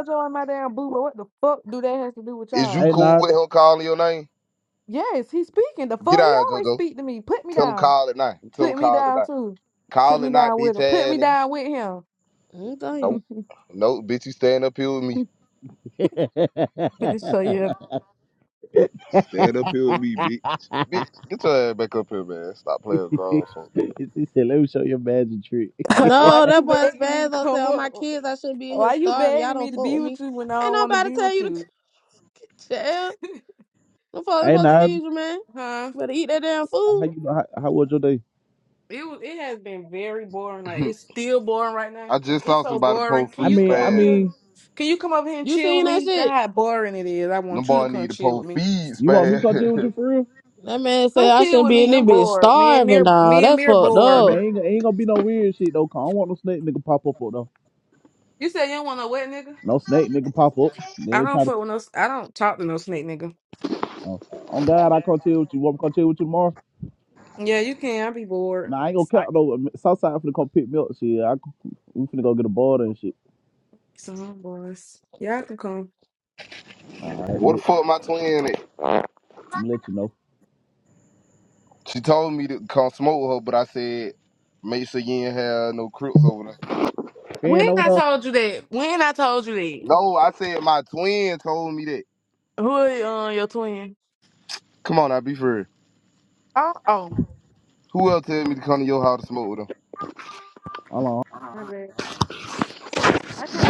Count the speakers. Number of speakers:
four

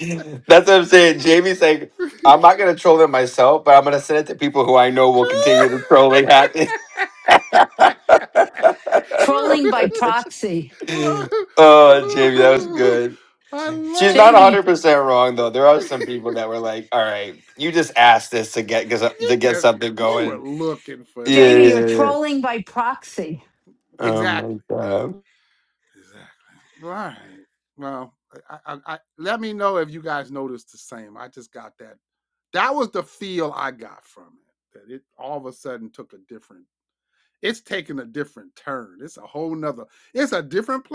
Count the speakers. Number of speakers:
three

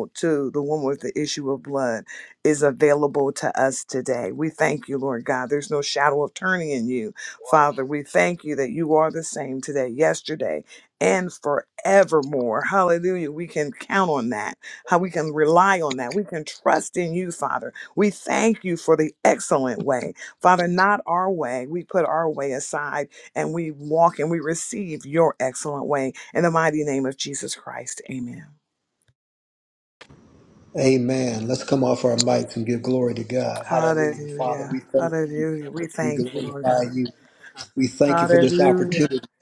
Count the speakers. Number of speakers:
two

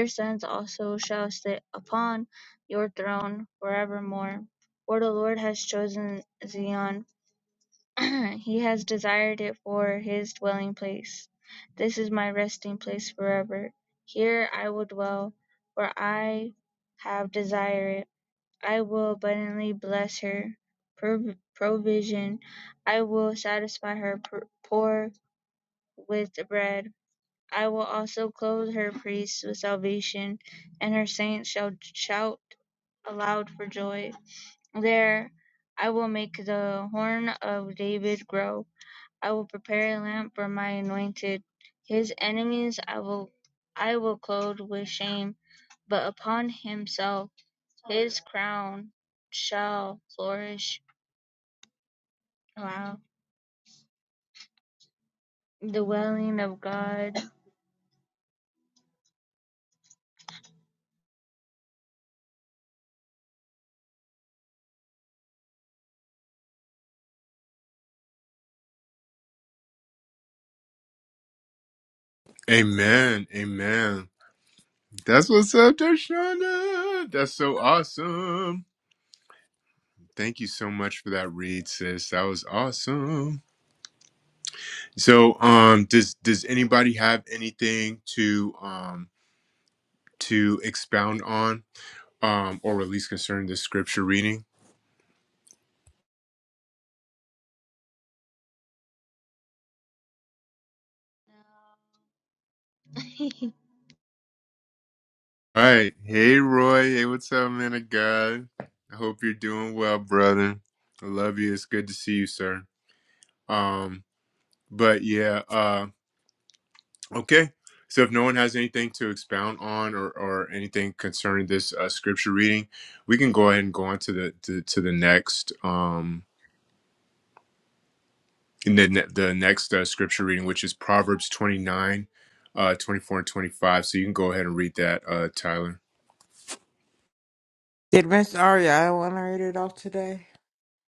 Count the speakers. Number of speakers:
three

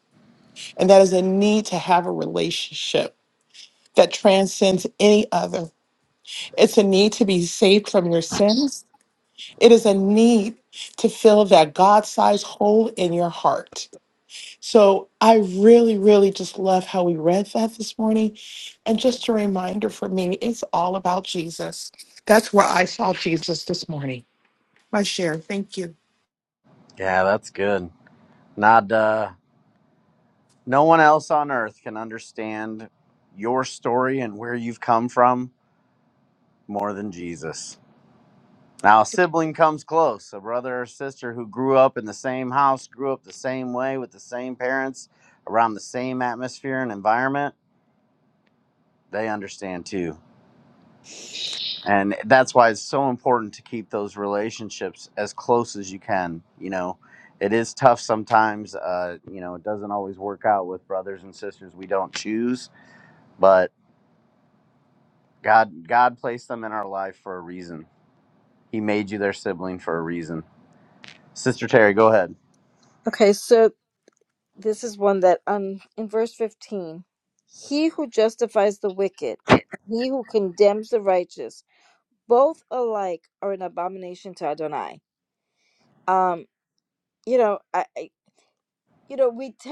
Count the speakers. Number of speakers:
three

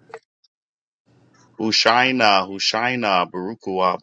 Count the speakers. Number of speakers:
one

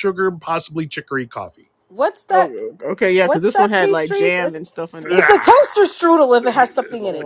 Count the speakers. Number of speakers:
three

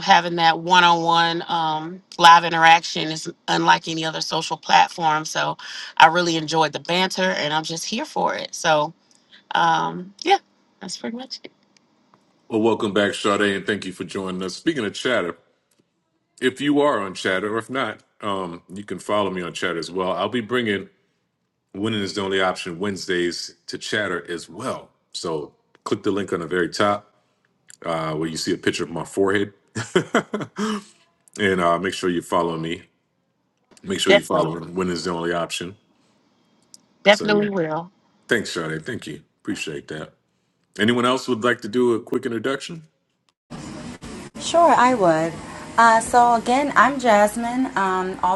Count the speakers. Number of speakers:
three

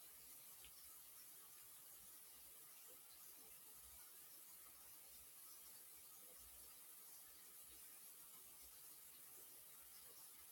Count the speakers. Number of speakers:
zero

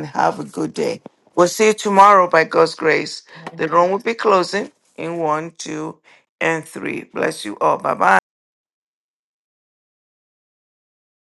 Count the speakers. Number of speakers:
one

